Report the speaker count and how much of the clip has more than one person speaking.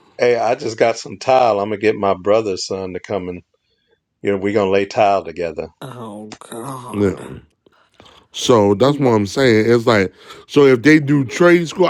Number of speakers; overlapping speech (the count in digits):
3, about 5%